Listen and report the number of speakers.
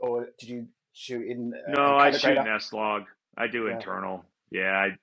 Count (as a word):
two